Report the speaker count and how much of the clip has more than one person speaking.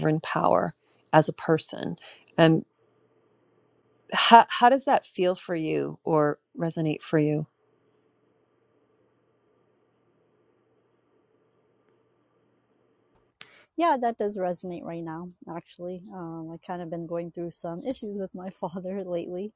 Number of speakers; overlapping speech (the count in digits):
2, no overlap